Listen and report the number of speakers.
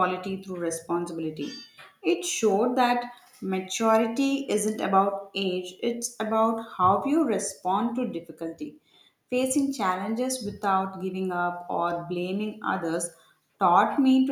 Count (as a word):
one